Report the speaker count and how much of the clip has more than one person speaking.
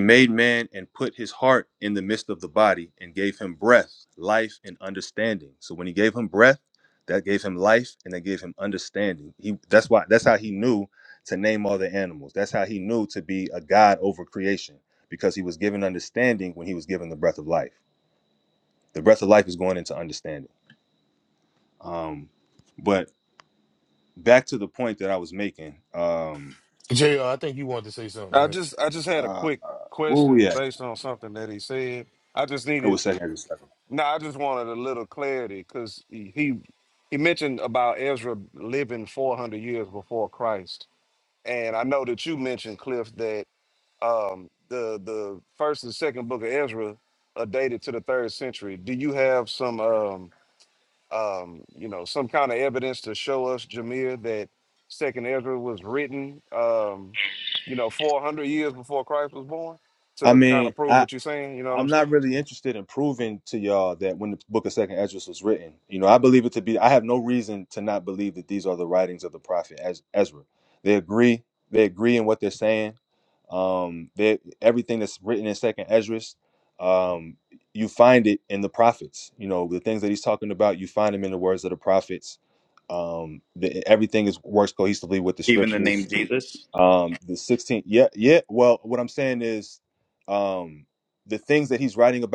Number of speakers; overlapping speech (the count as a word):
four, about 3%